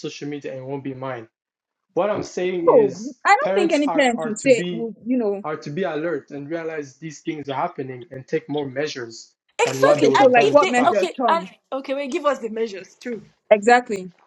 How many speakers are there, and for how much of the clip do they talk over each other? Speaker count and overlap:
three, about 25%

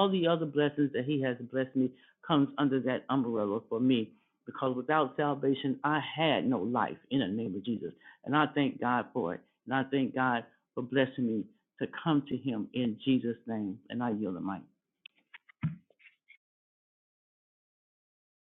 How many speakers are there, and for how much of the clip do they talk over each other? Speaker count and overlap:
one, no overlap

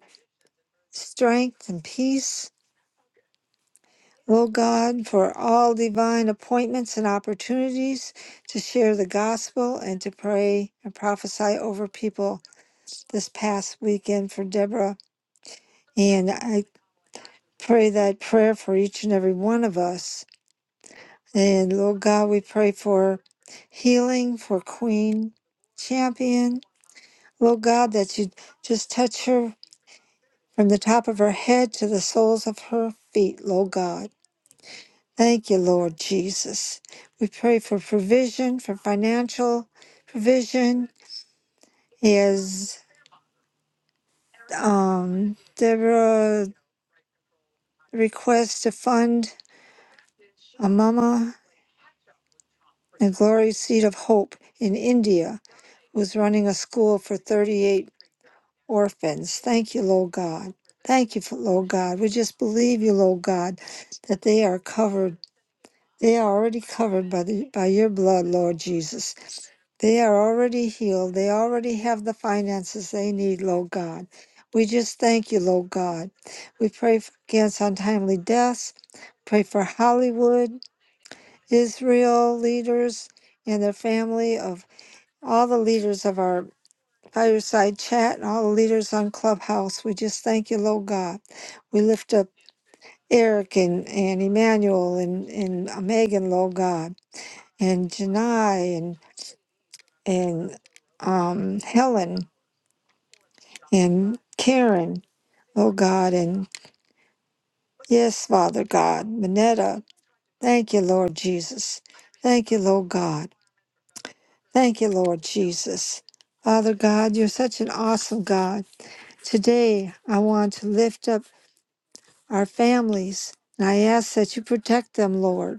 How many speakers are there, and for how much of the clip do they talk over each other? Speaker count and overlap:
one, no overlap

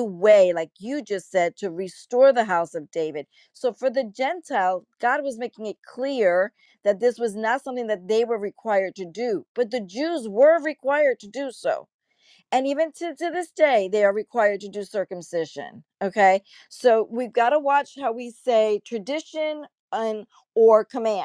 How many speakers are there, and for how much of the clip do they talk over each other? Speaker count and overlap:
one, no overlap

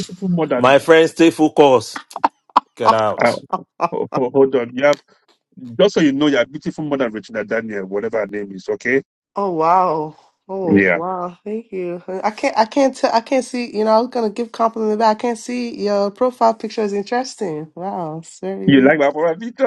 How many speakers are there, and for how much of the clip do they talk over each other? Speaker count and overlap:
three, about 5%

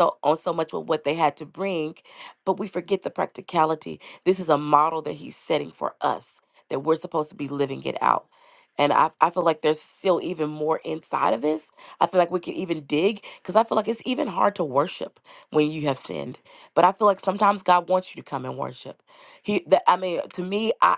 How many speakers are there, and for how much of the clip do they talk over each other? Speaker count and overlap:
one, no overlap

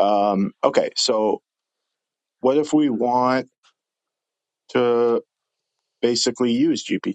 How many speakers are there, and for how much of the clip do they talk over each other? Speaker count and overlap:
one, no overlap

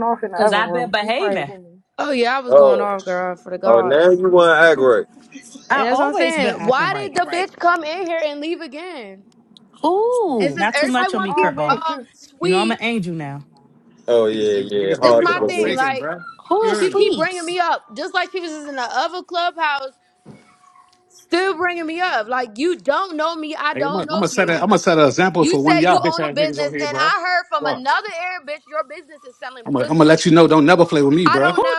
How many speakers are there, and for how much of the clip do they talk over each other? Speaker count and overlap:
six, about 35%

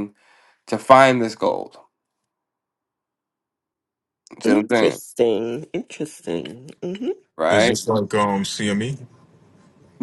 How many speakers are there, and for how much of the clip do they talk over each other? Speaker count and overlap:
three, about 8%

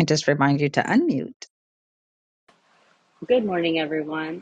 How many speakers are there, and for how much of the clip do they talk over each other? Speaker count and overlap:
two, no overlap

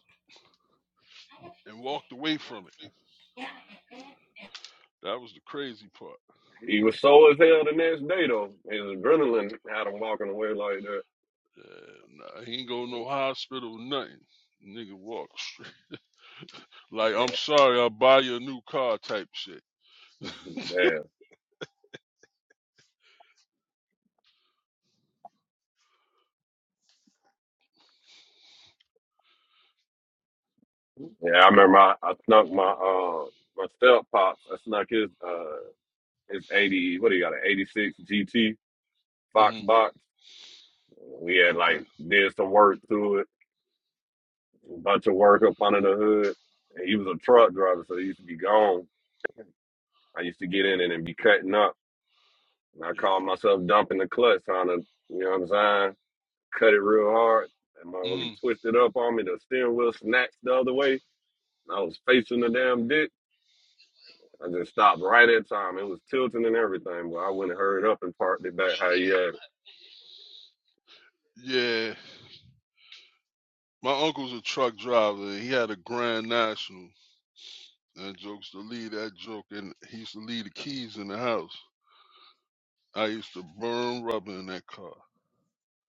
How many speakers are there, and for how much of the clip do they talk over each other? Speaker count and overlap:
two, about 2%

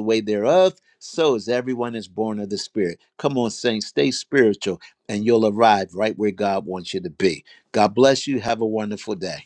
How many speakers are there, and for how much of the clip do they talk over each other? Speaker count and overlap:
one, no overlap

